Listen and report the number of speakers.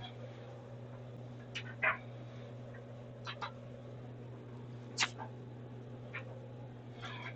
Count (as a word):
zero